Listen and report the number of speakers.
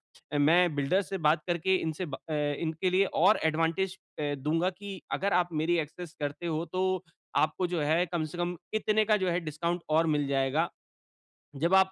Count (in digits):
1